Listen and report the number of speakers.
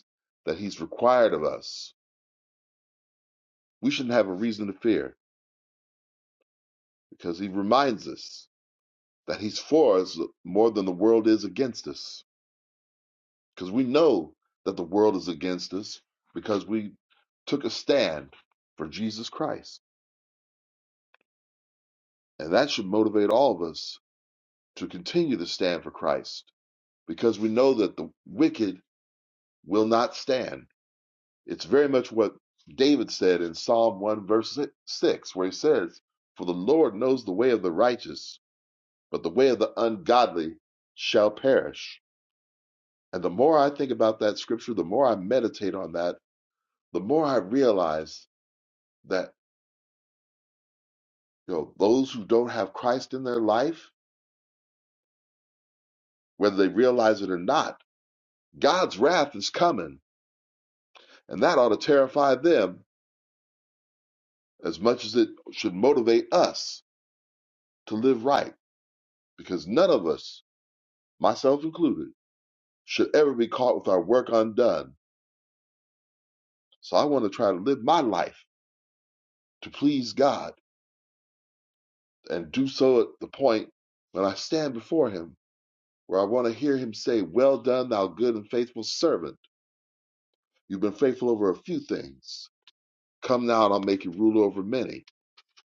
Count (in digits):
1